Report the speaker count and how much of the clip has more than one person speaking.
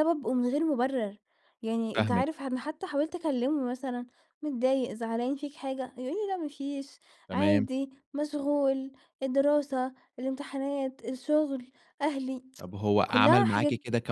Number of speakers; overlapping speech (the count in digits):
2, about 9%